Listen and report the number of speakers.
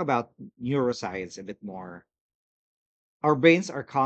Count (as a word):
one